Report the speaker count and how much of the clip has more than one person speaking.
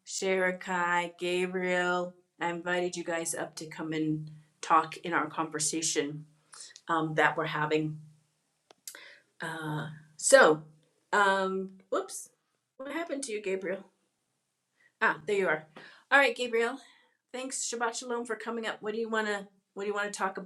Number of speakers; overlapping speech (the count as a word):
one, no overlap